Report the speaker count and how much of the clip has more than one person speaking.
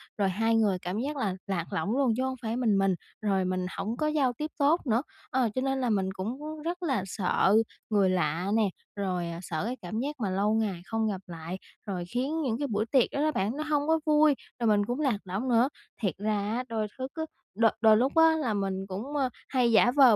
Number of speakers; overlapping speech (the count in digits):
1, no overlap